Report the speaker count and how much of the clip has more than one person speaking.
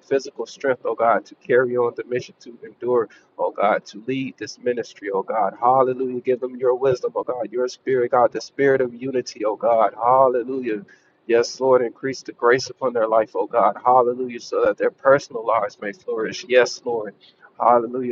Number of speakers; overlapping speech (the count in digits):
1, no overlap